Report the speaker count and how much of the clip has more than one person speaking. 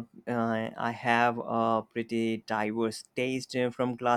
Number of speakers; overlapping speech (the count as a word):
one, no overlap